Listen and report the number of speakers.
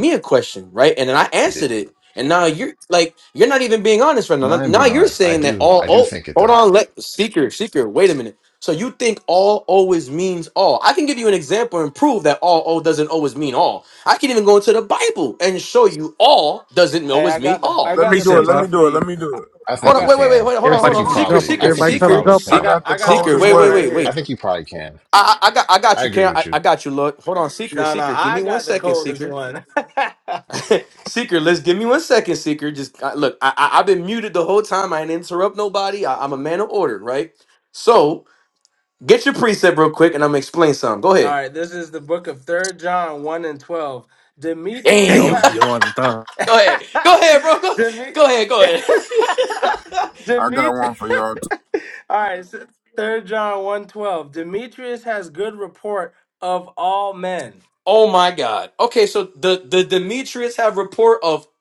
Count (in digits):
5